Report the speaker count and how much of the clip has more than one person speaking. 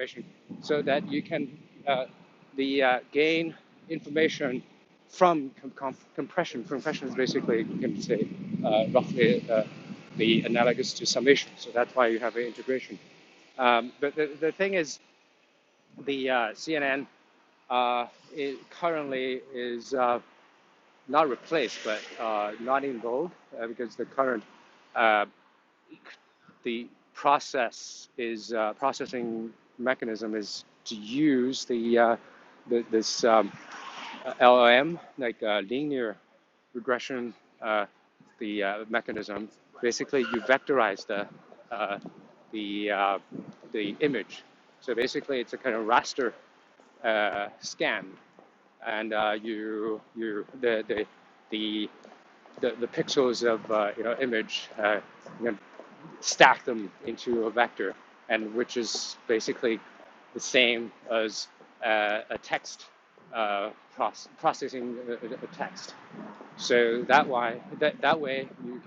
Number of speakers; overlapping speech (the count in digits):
1, no overlap